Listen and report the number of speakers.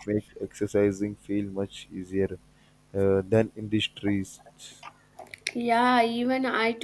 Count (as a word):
two